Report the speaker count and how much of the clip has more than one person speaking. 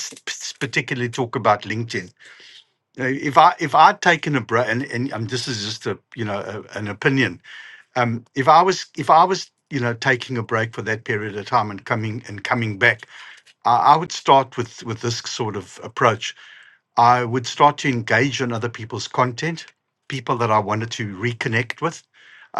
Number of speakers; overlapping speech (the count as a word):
one, no overlap